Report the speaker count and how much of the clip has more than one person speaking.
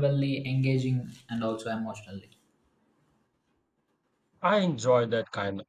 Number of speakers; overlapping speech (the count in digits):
2, no overlap